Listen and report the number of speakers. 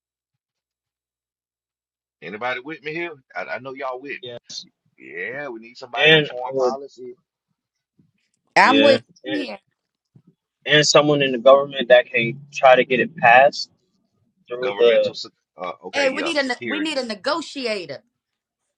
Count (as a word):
three